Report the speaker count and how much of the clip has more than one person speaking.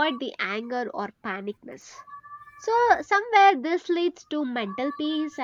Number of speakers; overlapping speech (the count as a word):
one, no overlap